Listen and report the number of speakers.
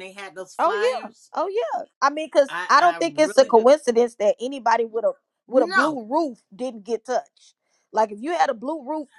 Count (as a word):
two